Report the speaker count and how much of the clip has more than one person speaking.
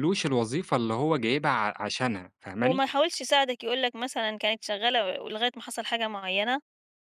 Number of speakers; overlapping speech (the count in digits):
2, about 2%